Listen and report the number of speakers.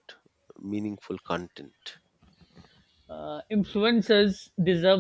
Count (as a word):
two